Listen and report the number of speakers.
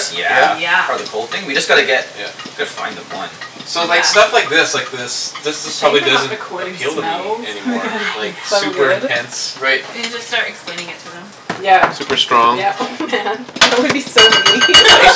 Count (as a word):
four